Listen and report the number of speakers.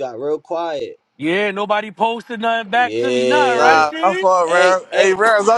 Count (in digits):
3